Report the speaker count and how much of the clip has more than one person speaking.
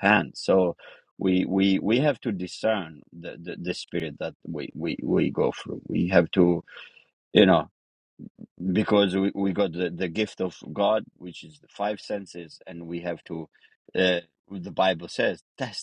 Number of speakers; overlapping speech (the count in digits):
1, no overlap